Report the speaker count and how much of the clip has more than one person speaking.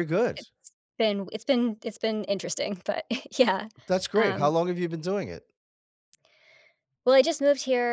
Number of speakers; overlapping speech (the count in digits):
2, about 5%